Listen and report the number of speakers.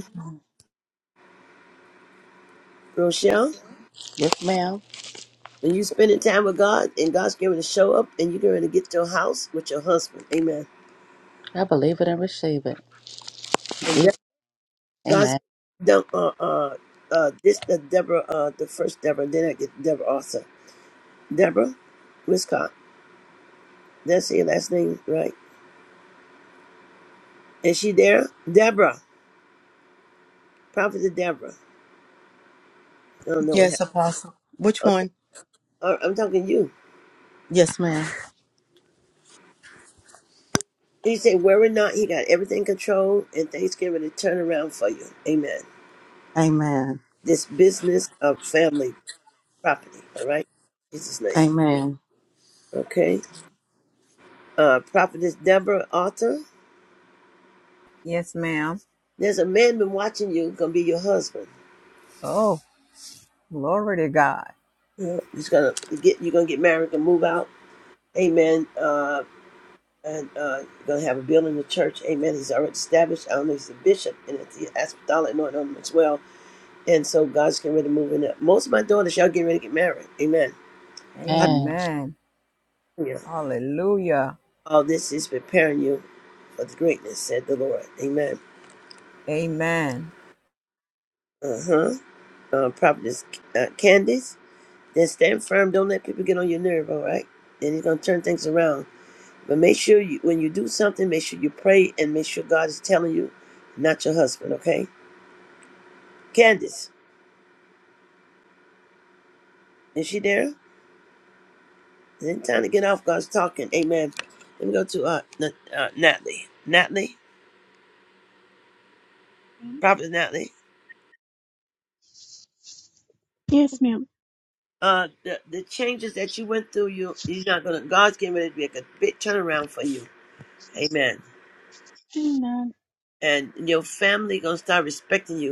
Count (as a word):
five